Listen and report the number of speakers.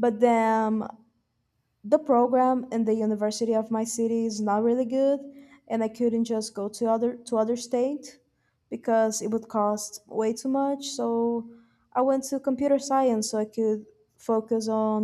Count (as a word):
one